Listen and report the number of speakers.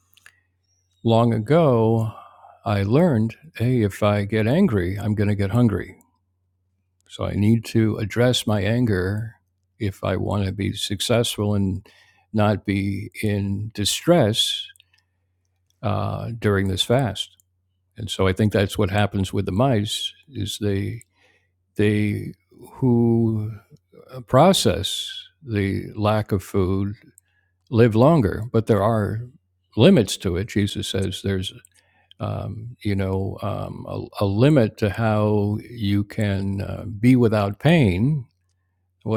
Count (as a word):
one